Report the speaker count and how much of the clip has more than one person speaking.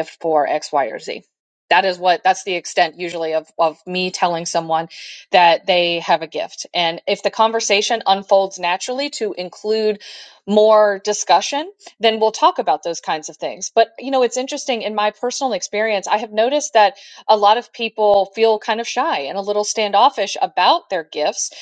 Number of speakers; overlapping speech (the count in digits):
1, no overlap